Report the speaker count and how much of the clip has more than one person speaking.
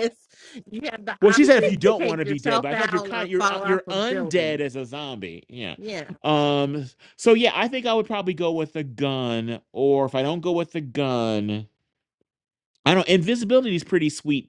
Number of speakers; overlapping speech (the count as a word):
two, about 23%